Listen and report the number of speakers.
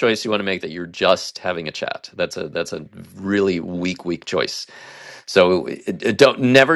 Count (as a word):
one